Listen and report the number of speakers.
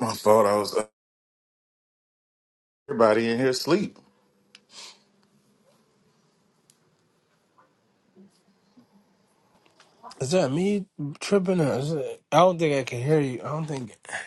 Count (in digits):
2